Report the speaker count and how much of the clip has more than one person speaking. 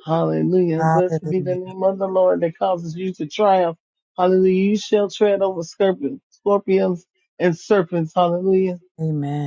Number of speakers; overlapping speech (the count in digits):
2, about 8%